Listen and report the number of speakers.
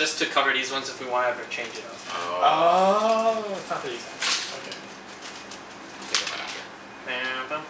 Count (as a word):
three